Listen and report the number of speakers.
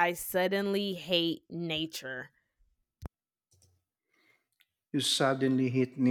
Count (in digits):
2